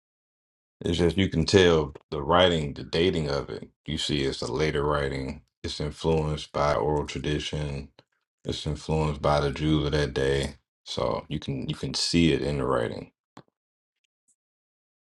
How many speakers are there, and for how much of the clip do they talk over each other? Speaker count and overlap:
one, no overlap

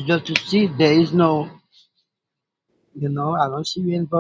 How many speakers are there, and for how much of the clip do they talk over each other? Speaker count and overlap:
one, no overlap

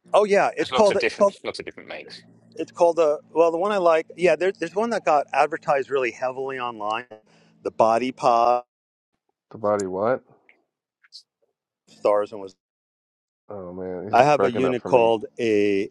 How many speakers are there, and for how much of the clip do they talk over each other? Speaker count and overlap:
three, about 11%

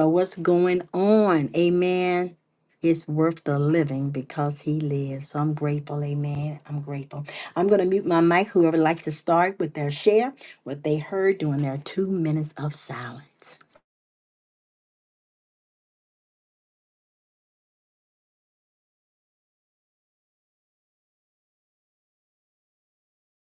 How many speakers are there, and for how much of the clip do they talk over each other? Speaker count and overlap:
one, no overlap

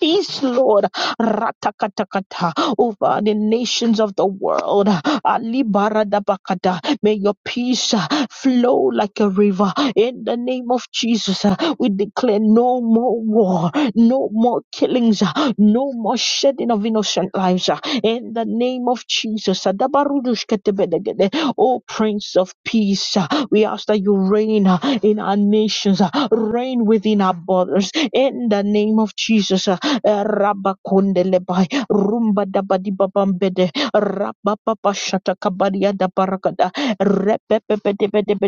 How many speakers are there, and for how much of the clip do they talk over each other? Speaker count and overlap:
one, no overlap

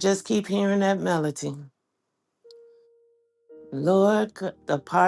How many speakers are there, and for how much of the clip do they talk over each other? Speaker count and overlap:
one, no overlap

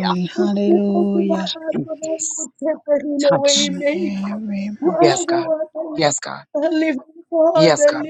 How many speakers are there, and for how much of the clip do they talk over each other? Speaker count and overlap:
three, about 42%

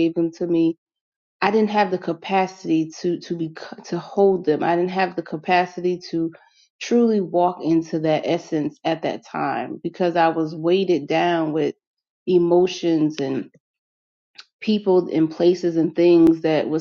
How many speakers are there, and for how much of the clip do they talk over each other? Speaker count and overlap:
one, no overlap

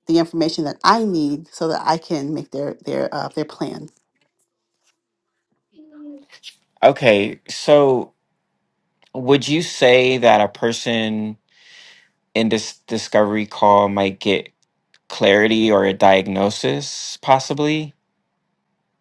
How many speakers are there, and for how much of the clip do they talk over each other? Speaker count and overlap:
two, no overlap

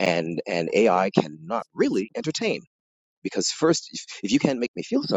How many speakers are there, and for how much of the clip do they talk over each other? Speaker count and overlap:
one, no overlap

